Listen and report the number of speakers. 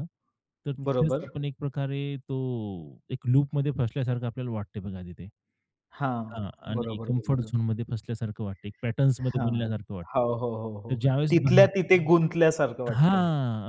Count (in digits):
2